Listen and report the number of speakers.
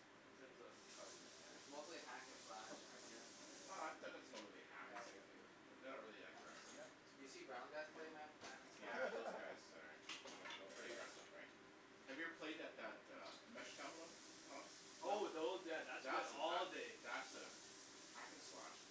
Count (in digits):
3